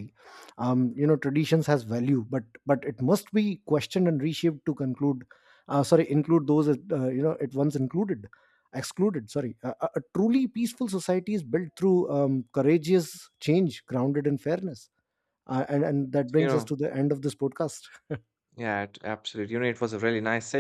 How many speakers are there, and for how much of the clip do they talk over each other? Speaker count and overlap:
two, about 1%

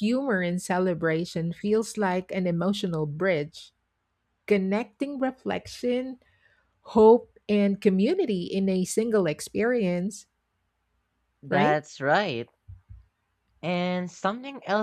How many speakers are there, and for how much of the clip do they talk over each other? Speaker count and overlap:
two, about 2%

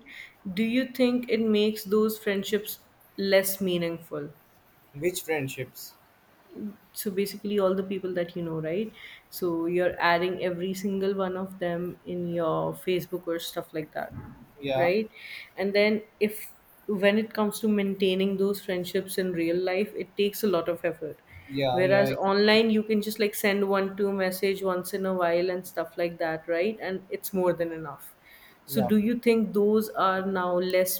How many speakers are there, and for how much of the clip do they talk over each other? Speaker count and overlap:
two, about 3%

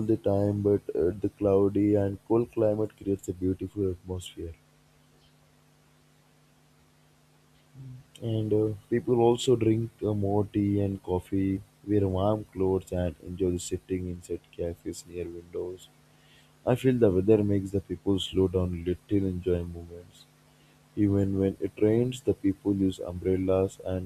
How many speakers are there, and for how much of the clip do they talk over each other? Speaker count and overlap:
one, no overlap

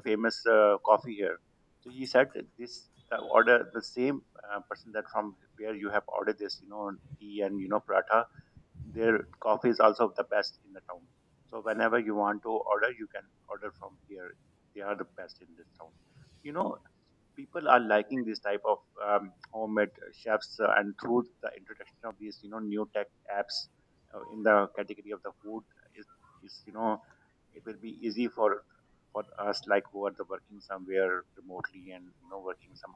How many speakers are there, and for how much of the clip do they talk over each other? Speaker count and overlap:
one, no overlap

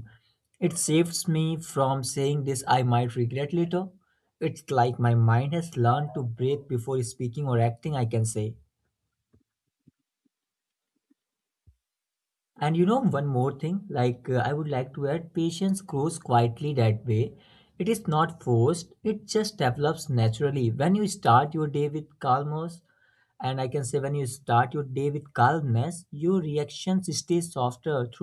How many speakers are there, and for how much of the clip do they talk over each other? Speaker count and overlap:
one, no overlap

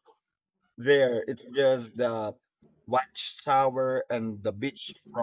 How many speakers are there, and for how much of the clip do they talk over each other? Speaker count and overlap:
one, no overlap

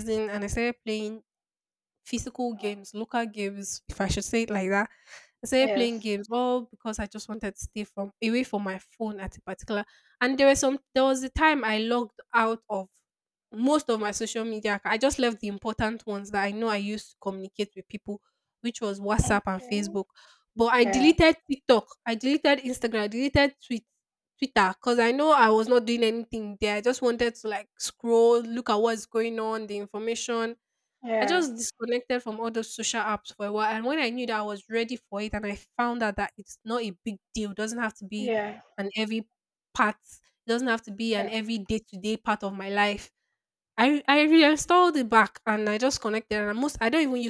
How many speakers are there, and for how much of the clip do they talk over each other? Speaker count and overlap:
two, about 4%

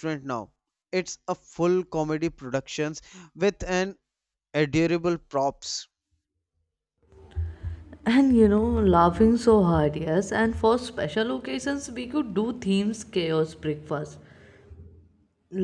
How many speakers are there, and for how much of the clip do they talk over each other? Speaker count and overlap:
two, no overlap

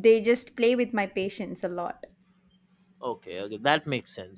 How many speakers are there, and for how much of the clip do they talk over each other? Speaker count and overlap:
two, no overlap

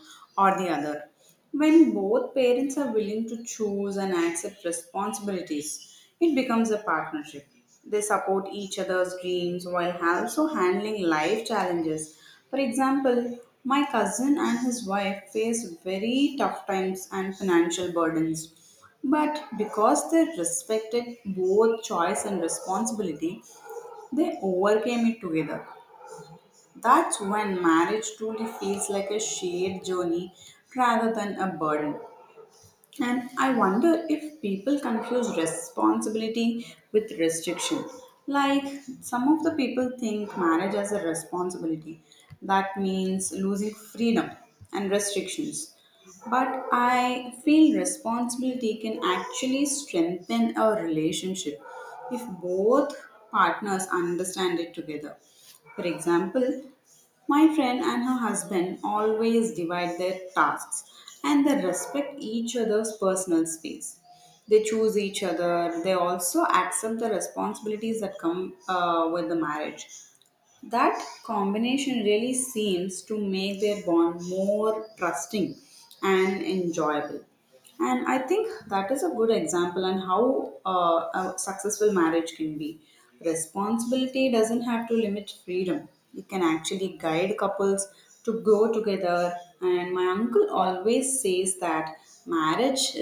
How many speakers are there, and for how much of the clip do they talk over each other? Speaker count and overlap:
one, no overlap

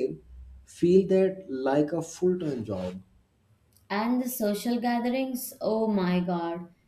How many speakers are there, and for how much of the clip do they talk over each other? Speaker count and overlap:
two, no overlap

